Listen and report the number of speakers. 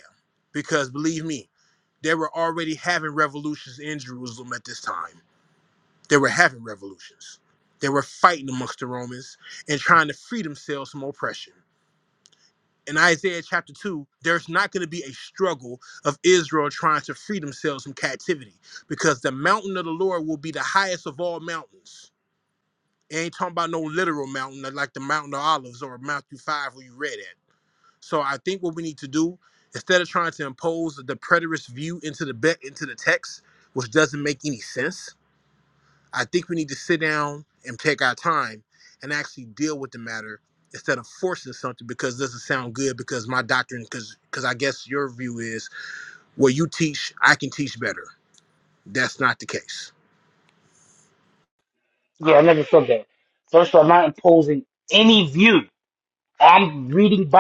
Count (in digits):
2